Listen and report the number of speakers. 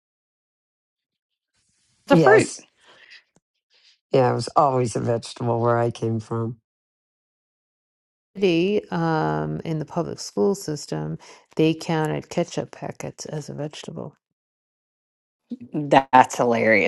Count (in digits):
3